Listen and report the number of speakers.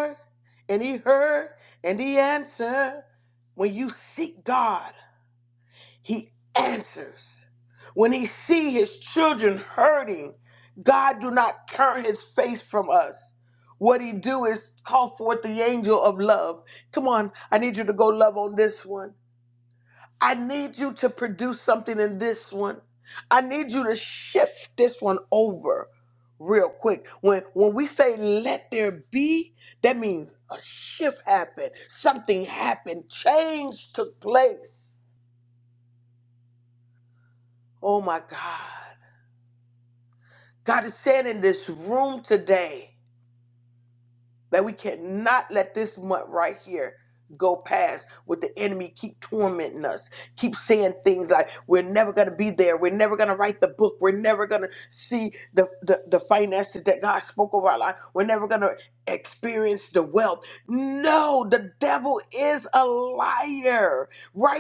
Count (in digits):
1